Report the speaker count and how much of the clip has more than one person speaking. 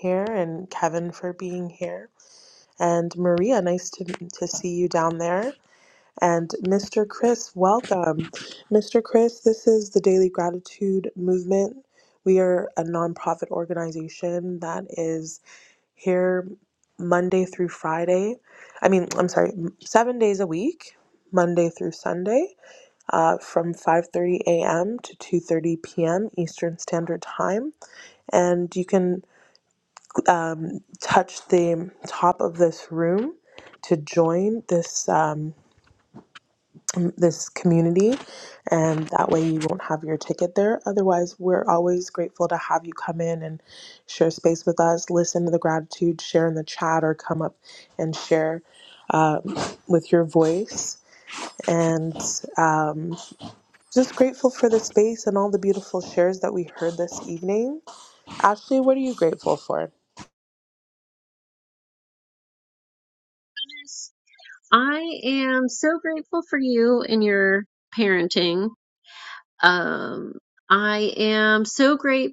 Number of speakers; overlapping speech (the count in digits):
2, no overlap